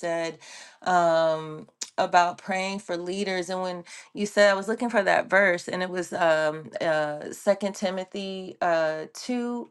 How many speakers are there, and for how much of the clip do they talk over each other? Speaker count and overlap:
1, no overlap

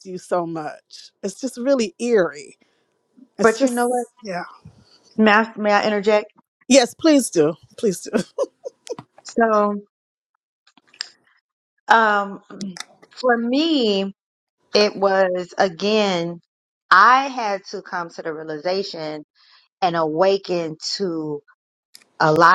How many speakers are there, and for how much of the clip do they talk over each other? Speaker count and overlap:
2, about 1%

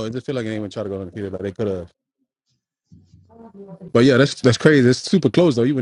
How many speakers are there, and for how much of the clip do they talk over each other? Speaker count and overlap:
1, no overlap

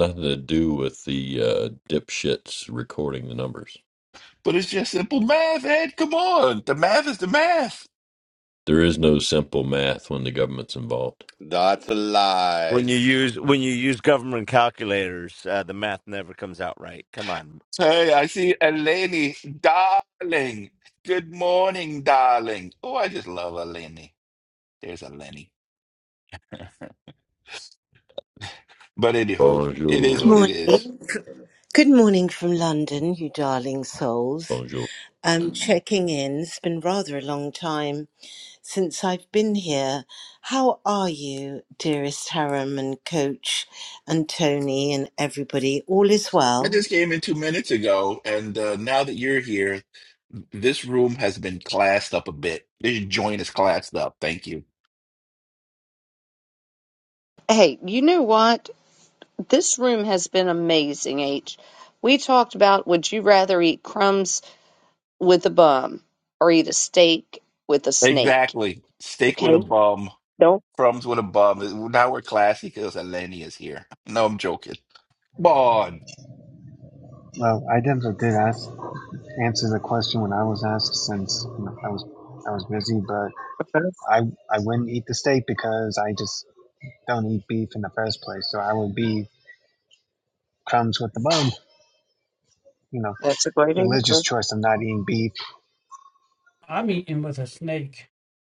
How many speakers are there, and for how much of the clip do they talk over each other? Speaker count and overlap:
8, about 3%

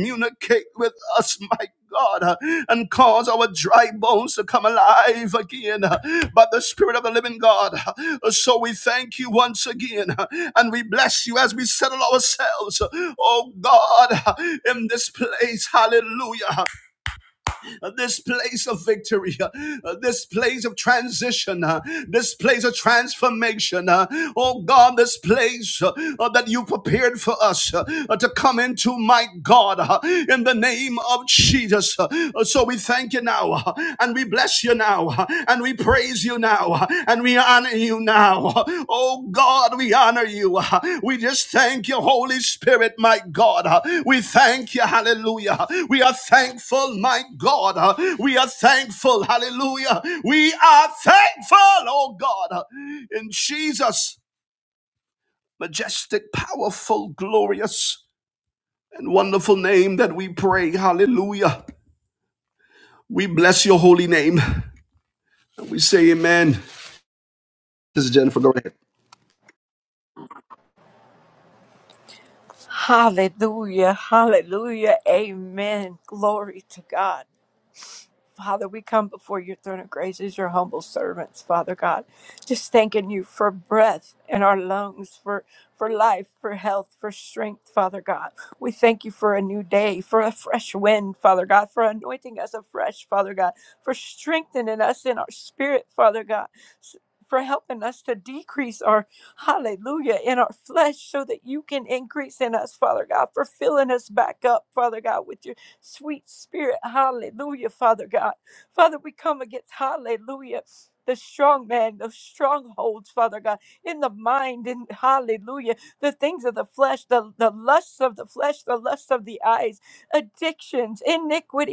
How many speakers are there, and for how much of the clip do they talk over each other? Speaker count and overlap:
2, no overlap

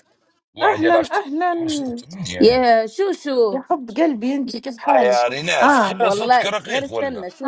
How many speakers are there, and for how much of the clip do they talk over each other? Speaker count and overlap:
3, about 38%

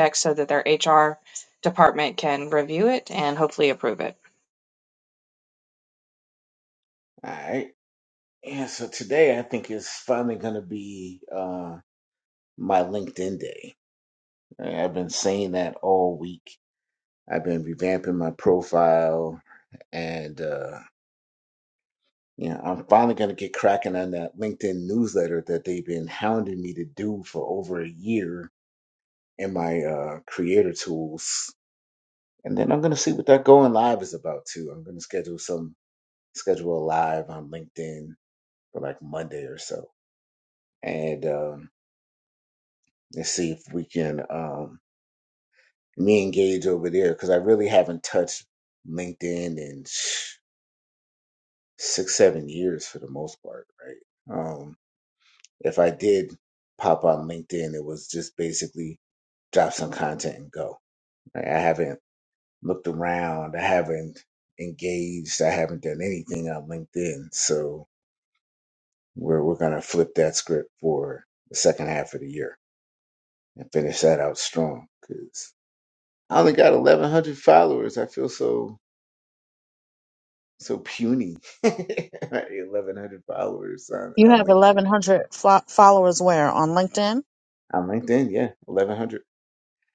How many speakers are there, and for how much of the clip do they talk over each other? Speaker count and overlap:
3, about 1%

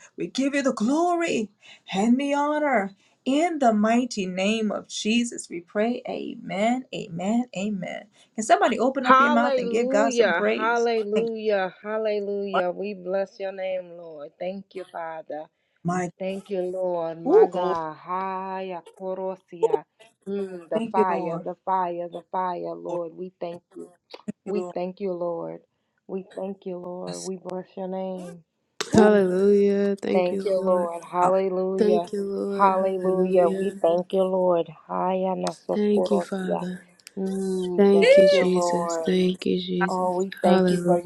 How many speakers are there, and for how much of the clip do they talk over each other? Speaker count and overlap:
3, about 22%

